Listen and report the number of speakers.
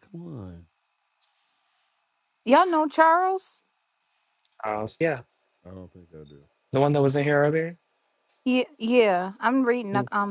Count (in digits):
3